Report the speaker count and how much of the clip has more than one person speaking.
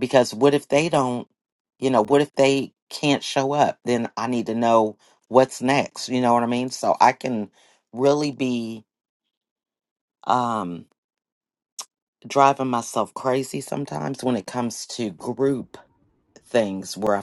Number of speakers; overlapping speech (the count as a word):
one, no overlap